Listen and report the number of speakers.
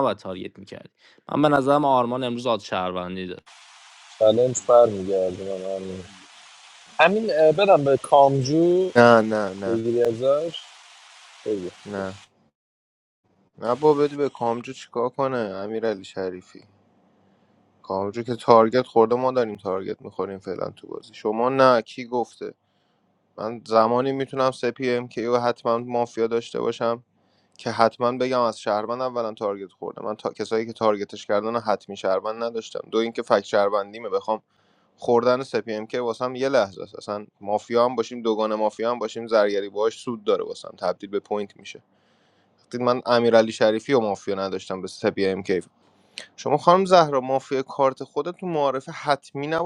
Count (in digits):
3